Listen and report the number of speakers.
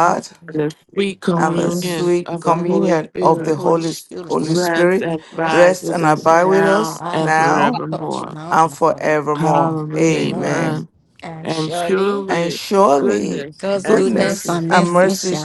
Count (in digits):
3